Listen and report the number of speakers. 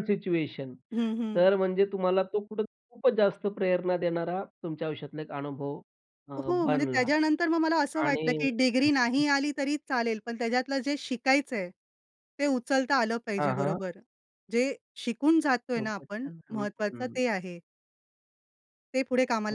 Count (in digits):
2